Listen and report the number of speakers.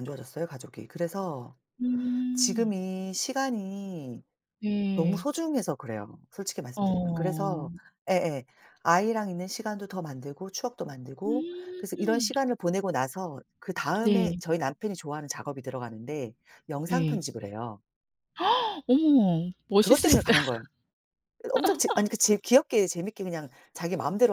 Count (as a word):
two